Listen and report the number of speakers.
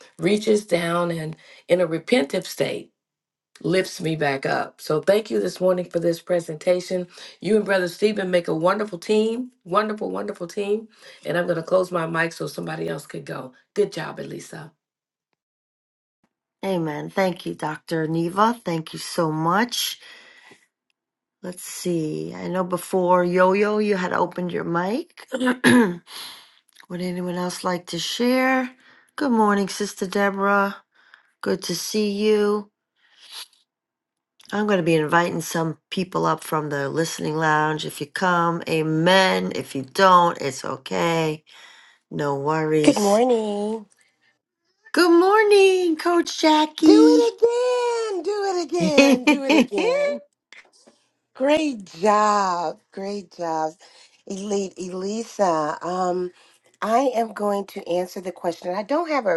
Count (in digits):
3